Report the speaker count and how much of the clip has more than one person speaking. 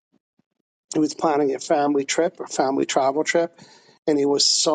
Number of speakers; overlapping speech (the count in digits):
1, no overlap